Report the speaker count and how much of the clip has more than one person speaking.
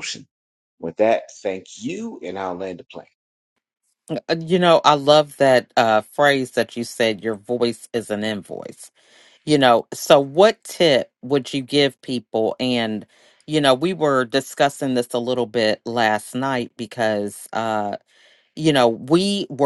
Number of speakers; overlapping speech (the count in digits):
2, no overlap